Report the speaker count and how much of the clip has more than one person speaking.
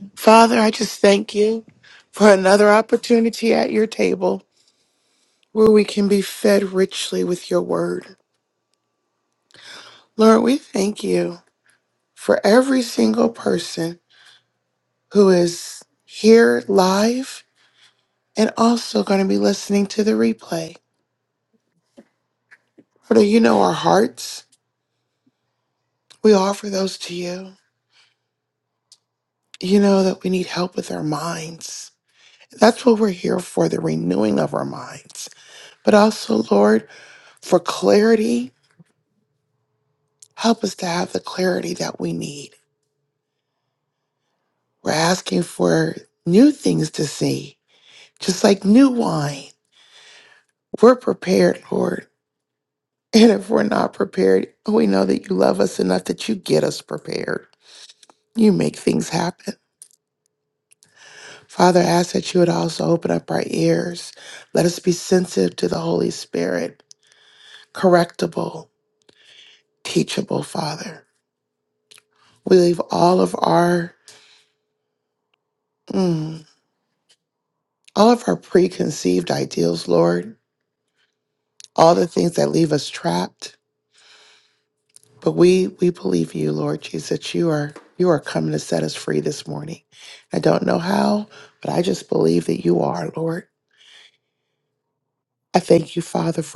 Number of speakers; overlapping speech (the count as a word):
one, no overlap